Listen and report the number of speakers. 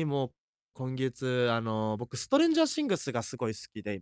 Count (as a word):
one